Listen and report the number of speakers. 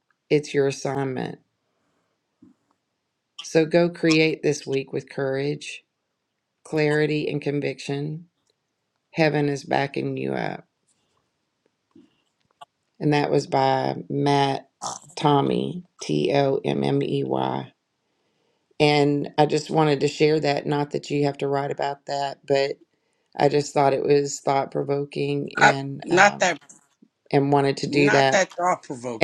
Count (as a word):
two